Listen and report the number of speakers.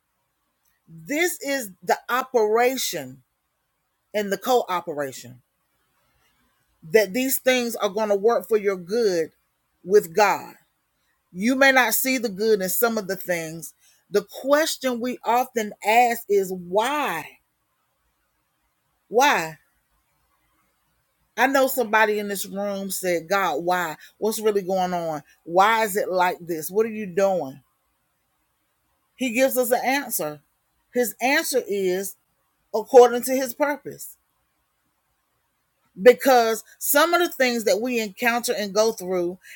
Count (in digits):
1